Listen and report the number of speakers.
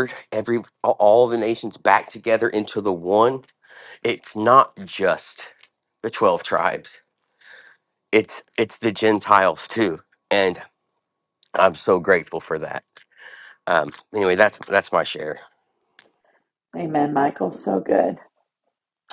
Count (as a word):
two